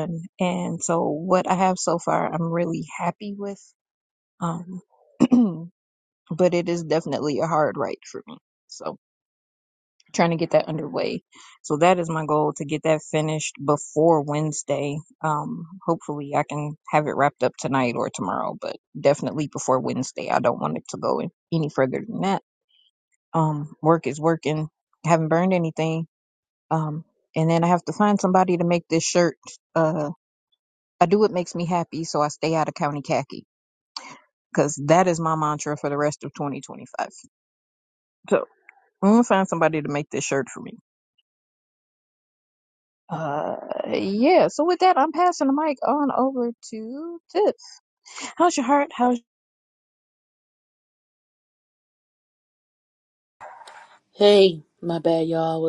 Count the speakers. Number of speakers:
two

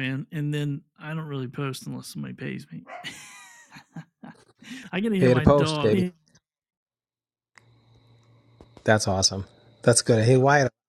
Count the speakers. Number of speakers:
two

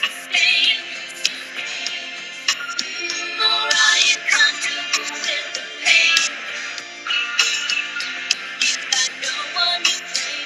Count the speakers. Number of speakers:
one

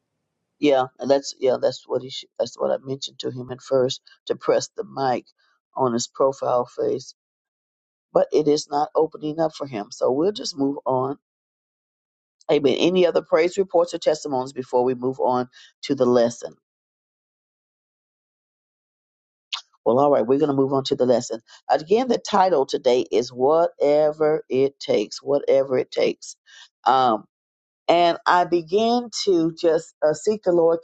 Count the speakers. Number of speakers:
one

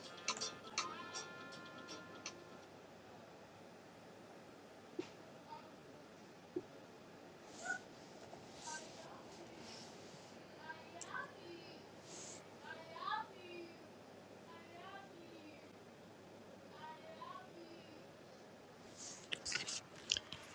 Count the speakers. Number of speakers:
zero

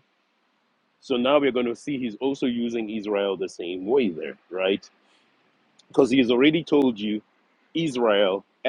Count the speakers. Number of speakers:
one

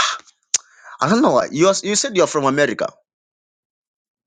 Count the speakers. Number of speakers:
one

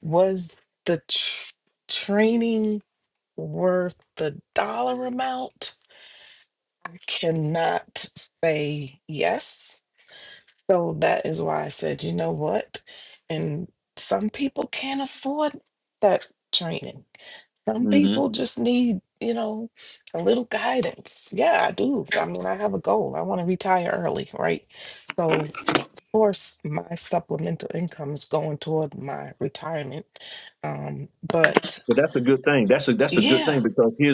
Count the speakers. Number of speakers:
two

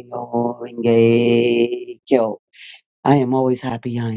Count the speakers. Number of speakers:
one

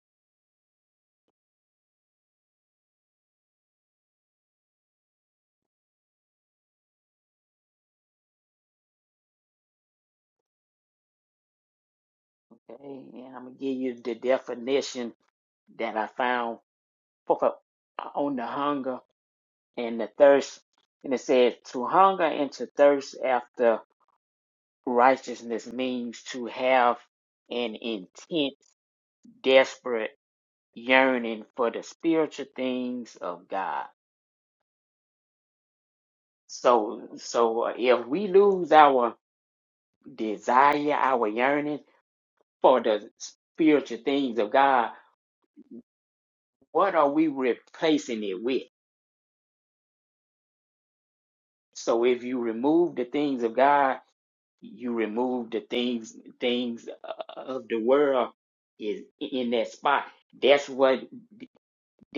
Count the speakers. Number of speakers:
one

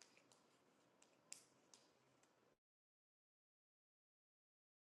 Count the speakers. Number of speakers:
zero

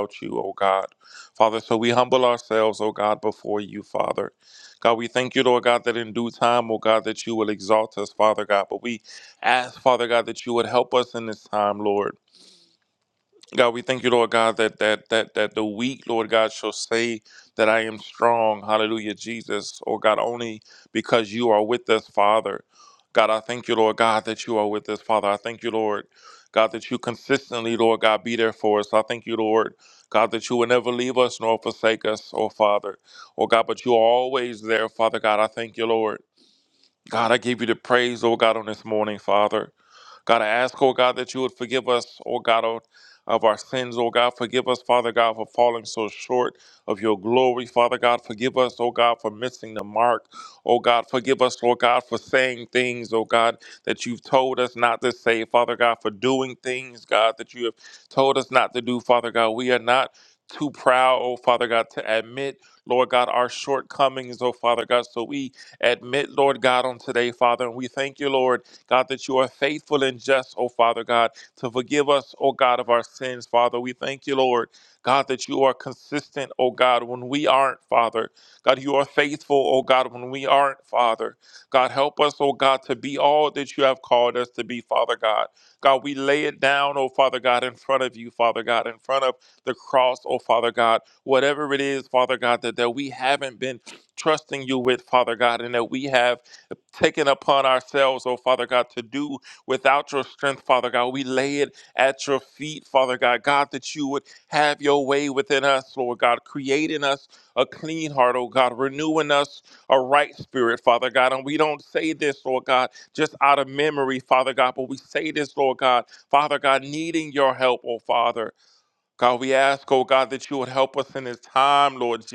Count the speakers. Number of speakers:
one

